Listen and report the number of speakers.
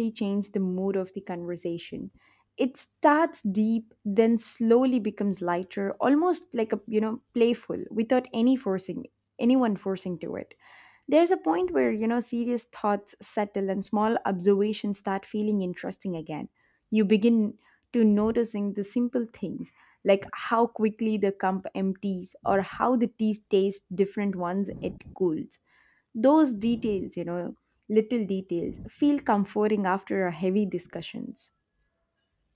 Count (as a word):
one